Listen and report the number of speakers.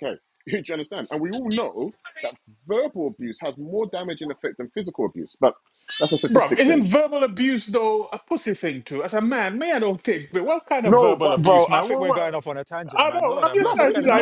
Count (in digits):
3